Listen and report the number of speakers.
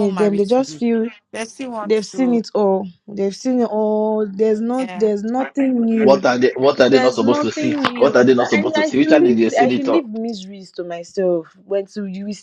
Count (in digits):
3